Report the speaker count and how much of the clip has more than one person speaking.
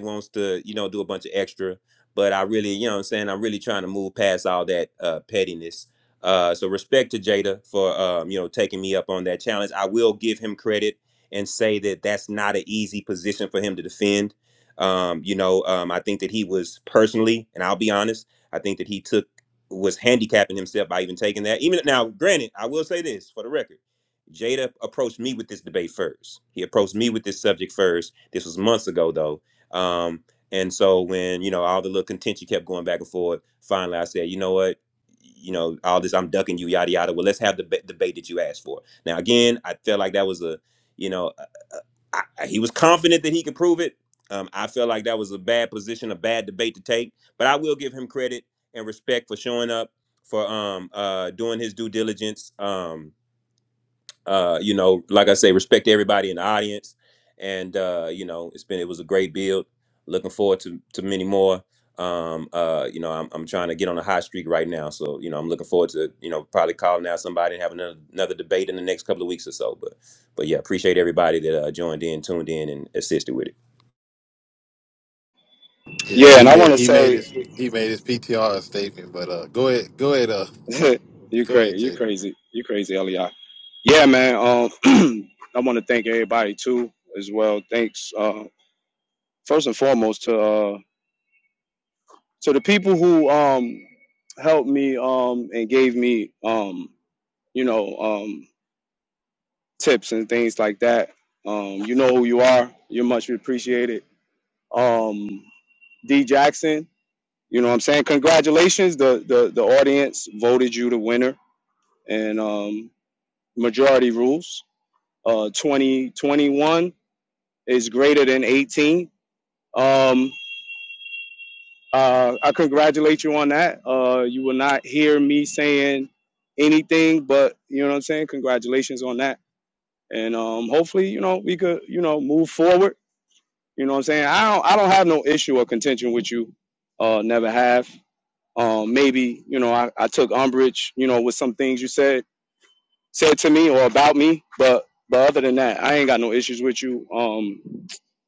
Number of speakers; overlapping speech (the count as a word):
three, about 1%